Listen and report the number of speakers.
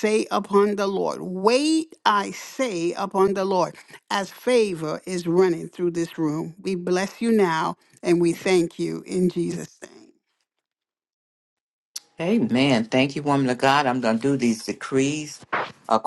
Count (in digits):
2